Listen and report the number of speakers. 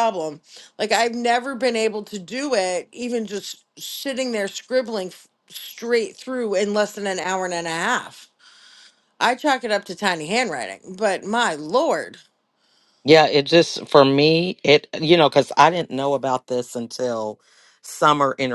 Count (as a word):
two